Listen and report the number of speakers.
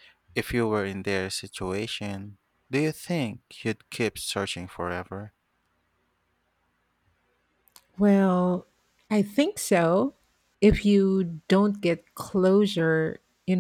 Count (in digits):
2